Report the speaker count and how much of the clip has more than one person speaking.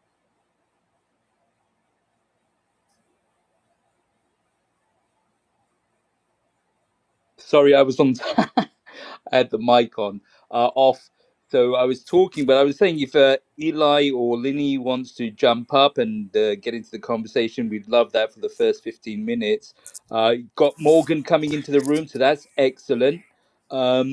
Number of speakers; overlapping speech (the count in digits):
1, no overlap